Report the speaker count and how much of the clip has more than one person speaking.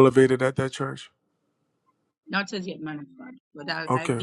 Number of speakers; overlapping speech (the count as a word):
two, about 9%